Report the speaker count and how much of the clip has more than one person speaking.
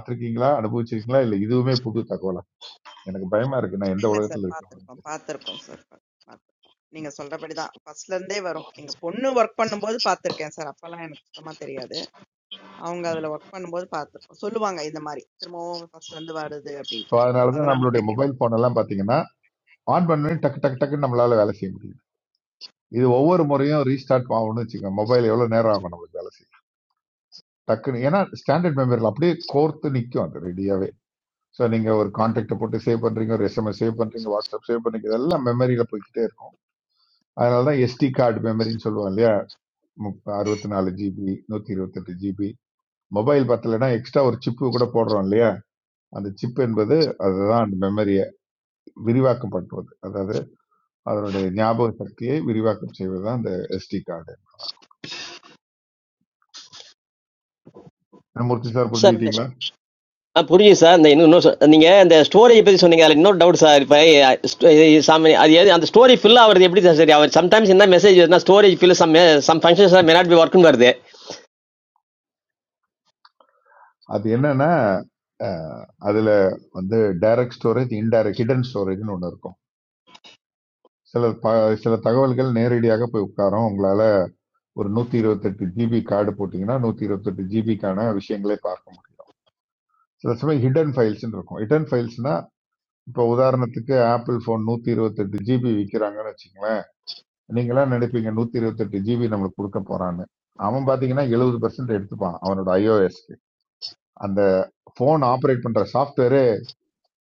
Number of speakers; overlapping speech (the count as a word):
three, about 2%